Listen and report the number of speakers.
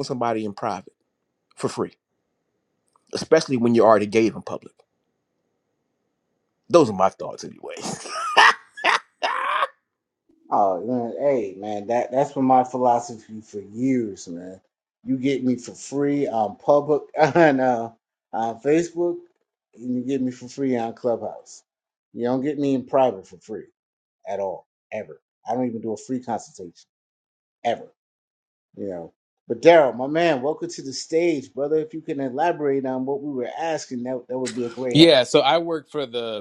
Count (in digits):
3